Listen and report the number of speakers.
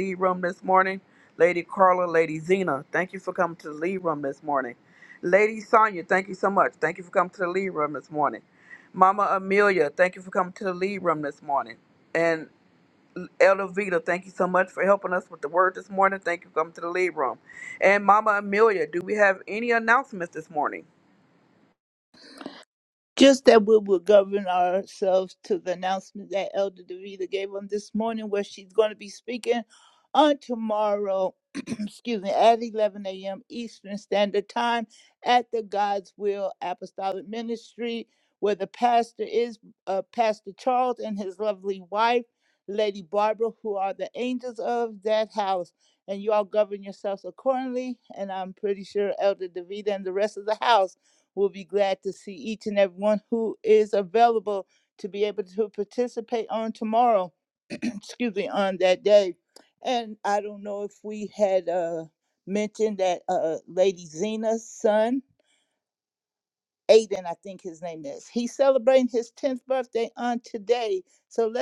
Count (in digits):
2